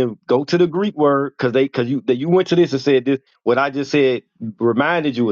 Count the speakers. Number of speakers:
one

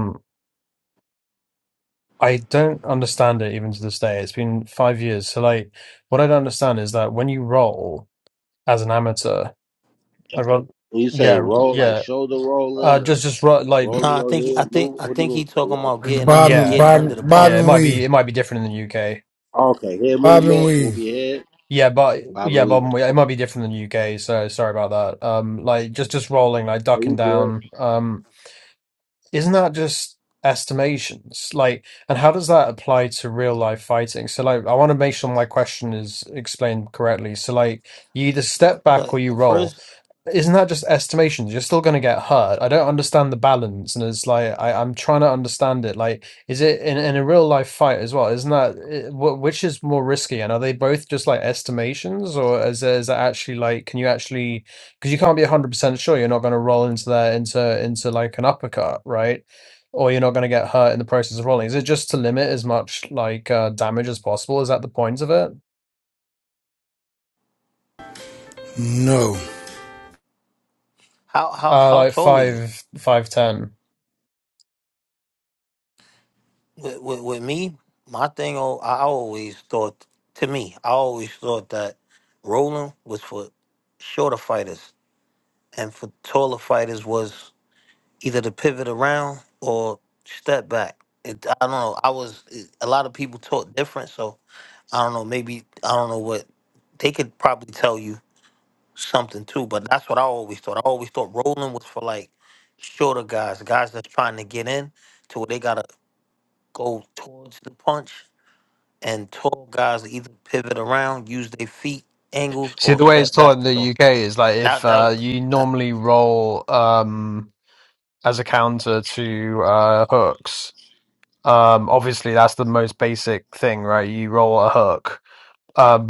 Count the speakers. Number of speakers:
four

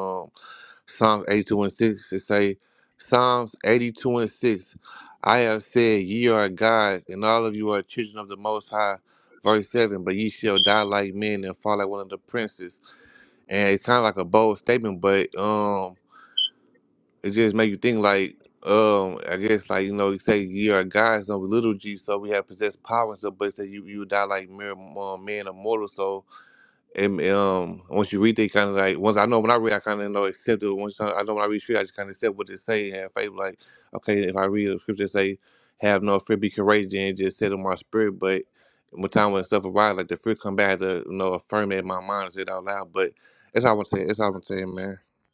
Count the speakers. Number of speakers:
one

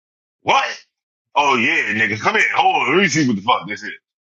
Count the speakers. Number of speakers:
one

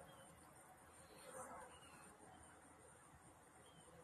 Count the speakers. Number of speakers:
zero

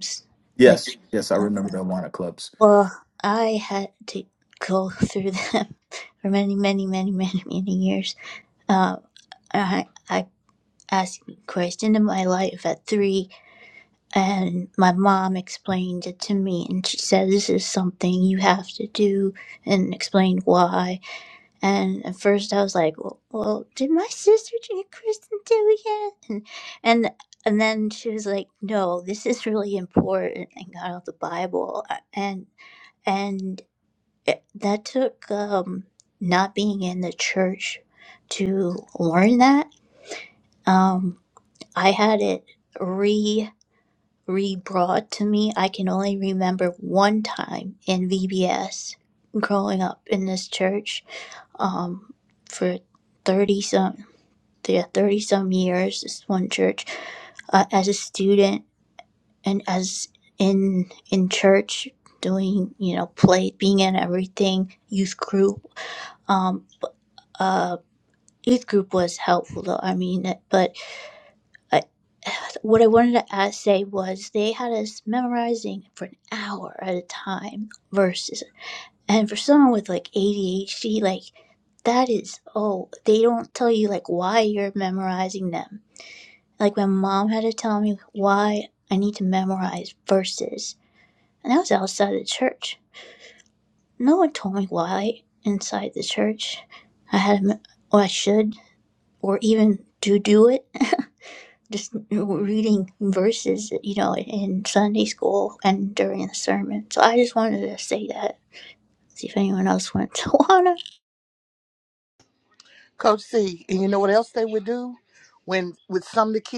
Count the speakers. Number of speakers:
three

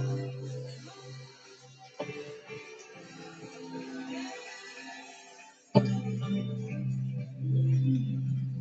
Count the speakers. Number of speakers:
zero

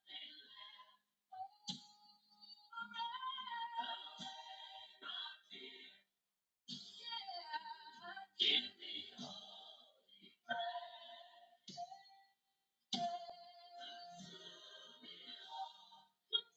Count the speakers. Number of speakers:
zero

